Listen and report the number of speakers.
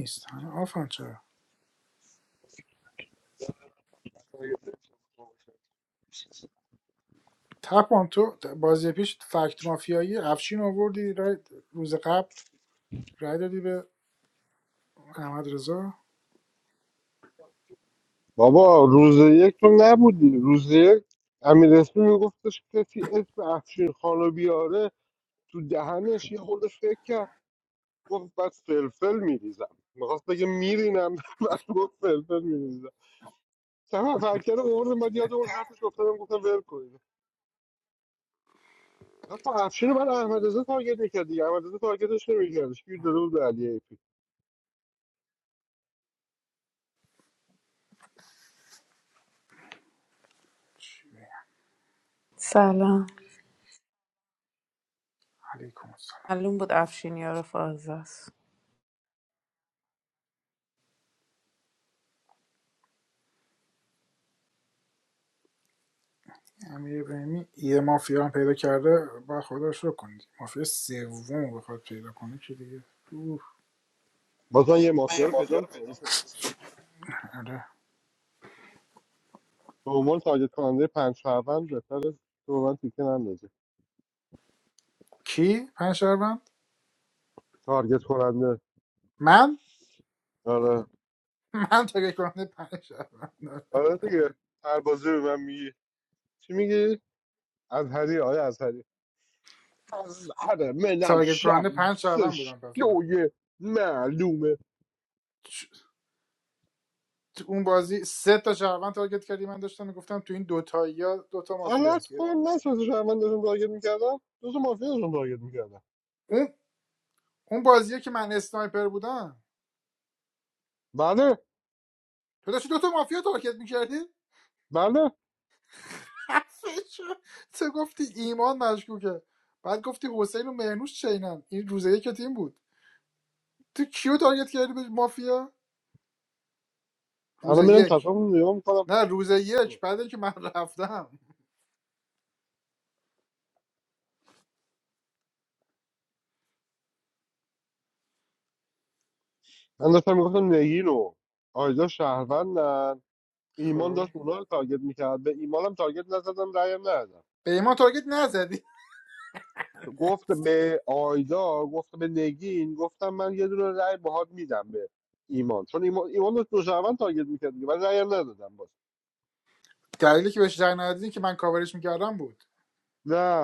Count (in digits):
3